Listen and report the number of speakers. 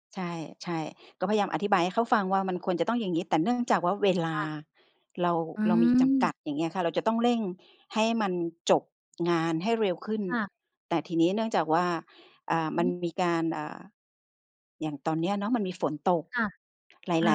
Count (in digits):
2